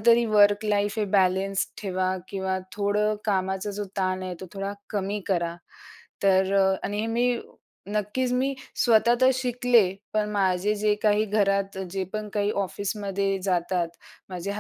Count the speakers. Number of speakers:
one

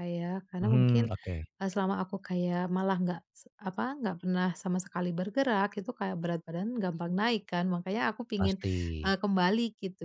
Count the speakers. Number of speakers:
two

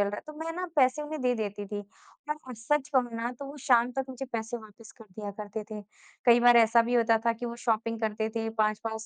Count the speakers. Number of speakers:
one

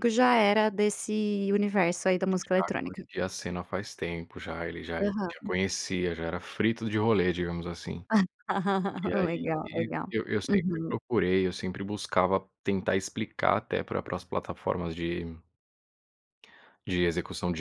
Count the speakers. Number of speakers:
two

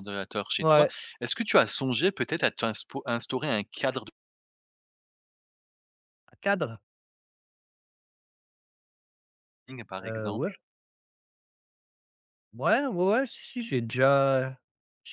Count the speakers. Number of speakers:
two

